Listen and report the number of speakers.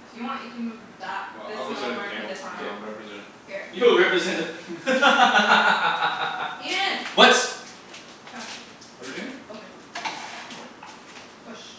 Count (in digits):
3